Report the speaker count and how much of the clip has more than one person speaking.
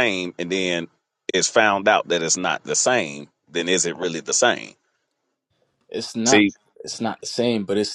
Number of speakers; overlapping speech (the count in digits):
2, about 2%